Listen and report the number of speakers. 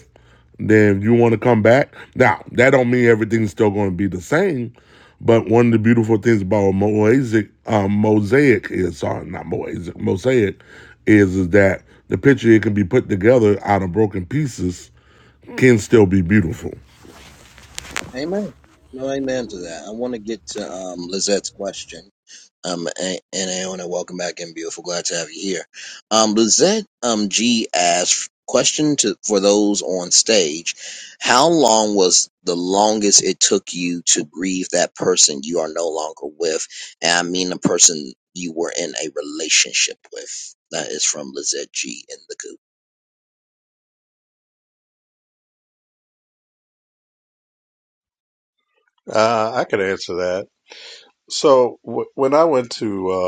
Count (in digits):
3